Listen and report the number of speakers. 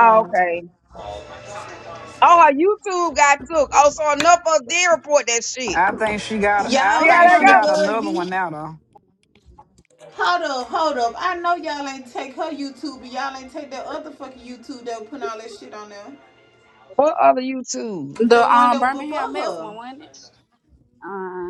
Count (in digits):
4